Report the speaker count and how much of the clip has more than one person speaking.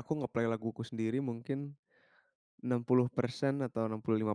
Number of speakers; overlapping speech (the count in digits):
1, no overlap